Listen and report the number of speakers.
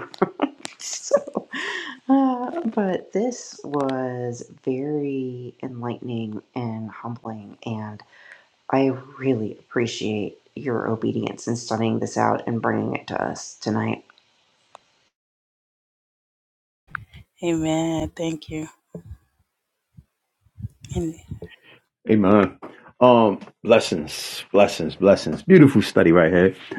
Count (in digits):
3